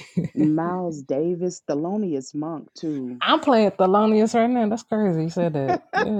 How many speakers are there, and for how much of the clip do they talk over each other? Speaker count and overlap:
2, no overlap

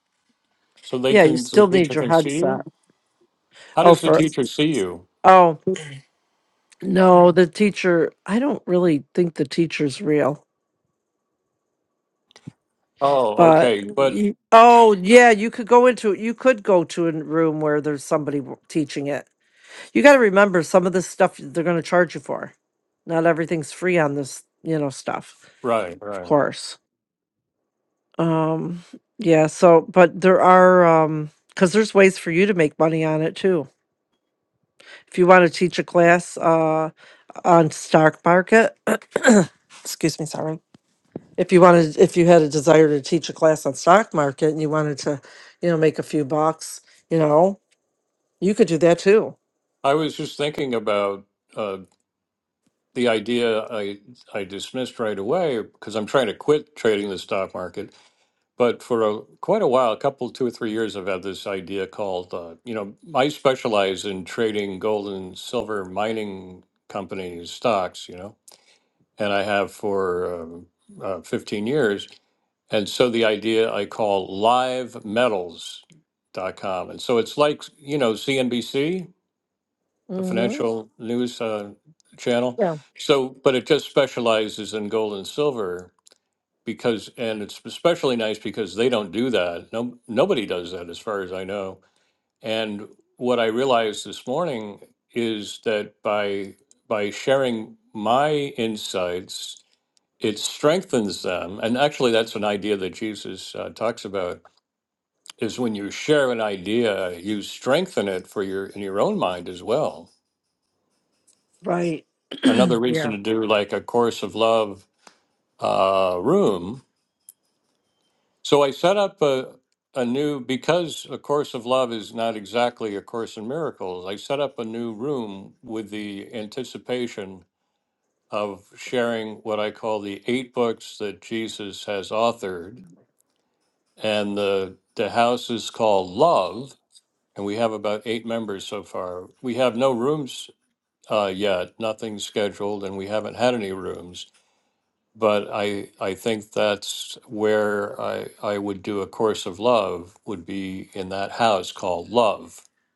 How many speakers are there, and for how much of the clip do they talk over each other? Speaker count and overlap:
2, about 2%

